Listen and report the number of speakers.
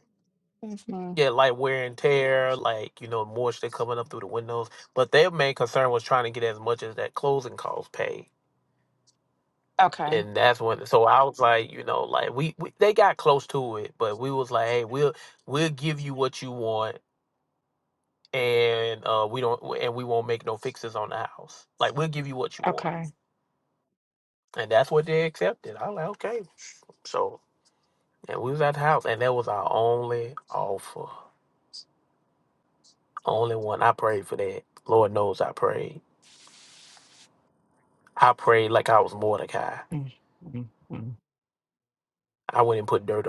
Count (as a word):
two